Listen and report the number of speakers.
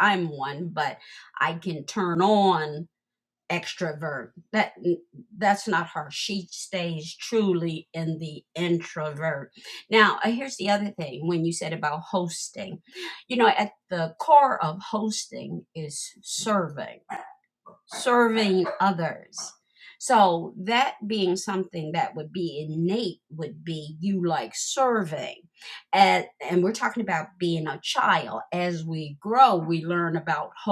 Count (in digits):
1